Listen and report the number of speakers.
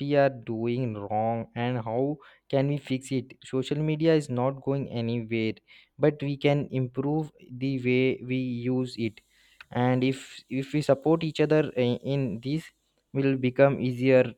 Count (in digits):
1